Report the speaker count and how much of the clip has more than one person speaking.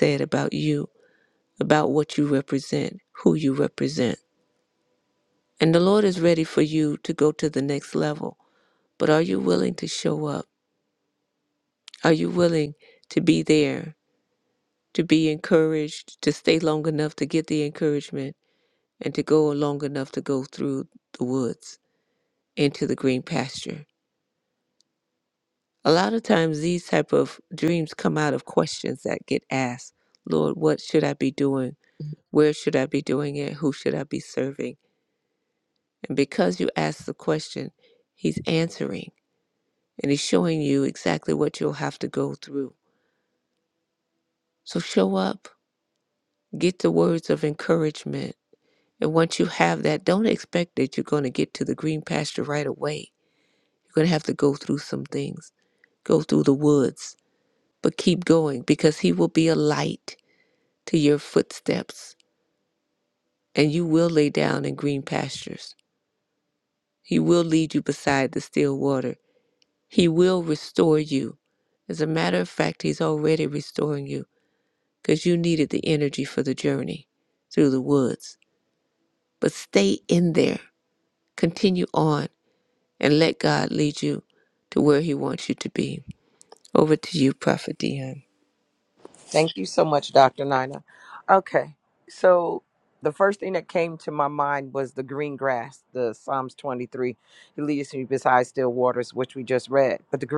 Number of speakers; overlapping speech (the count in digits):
2, no overlap